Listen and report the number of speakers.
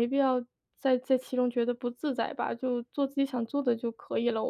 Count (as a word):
one